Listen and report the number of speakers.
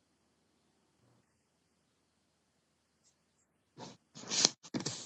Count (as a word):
zero